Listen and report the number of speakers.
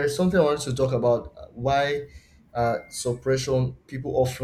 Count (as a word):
one